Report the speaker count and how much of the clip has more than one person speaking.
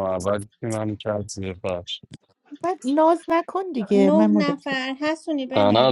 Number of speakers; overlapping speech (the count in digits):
3, about 21%